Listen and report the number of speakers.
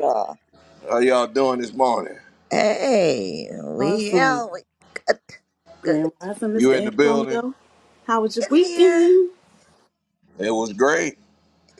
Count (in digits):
3